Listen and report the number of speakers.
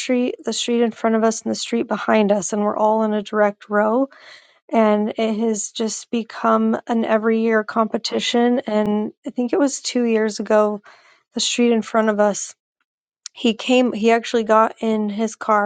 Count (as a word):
one